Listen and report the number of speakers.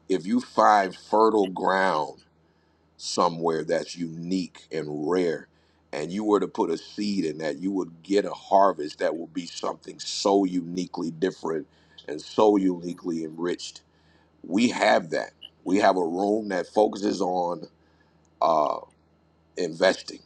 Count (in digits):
1